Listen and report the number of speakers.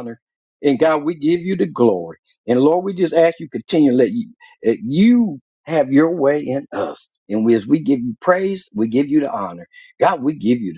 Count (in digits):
1